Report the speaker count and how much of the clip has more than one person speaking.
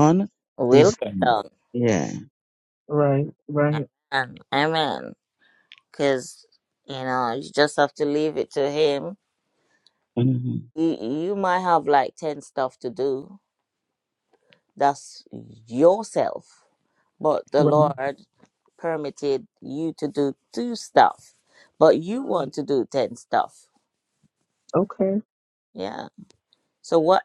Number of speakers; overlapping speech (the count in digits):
3, about 4%